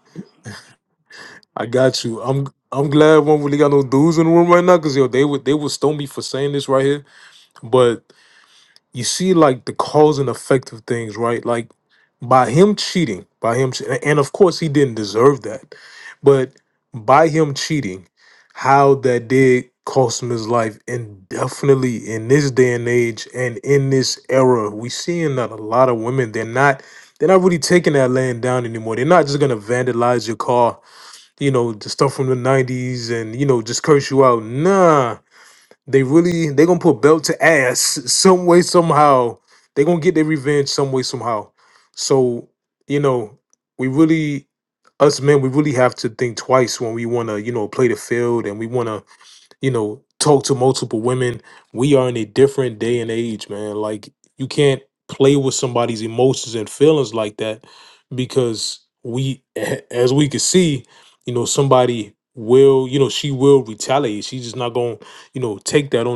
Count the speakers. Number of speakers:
1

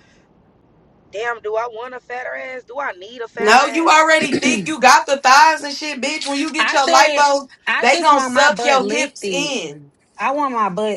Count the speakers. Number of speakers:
3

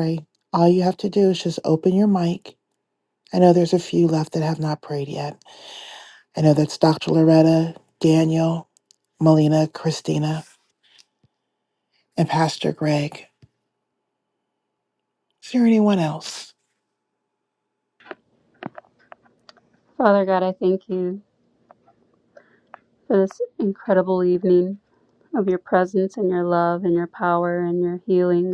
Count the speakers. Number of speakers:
2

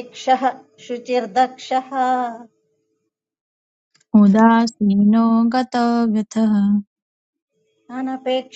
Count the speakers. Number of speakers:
2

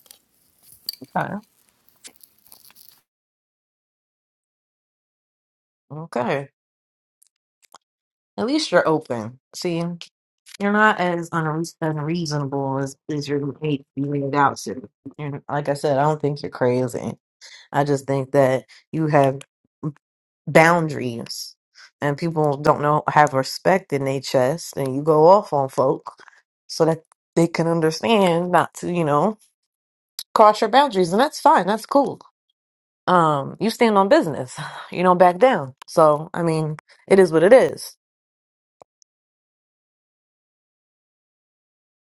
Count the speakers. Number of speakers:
1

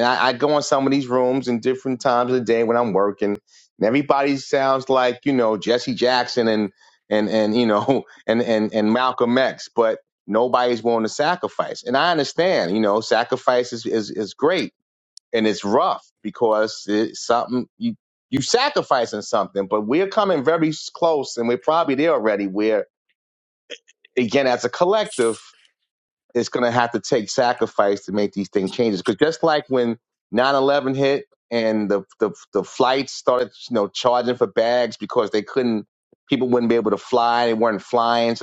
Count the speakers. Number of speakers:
1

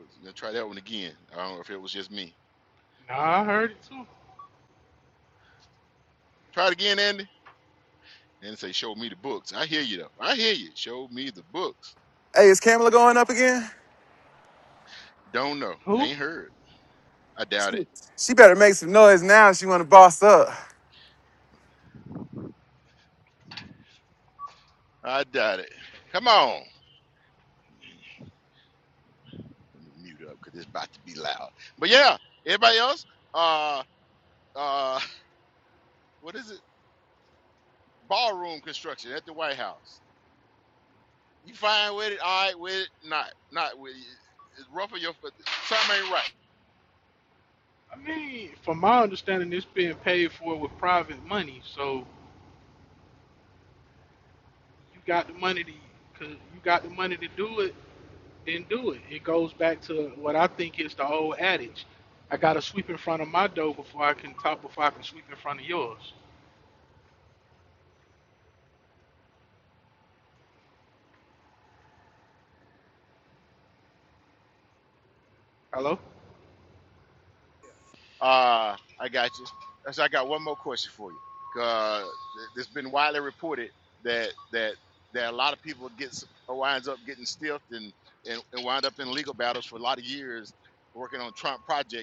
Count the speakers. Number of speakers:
3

